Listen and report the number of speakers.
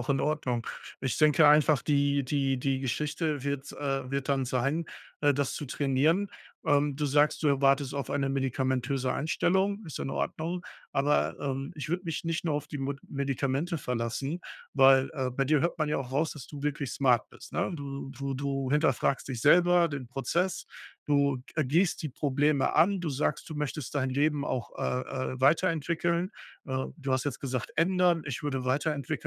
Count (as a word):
one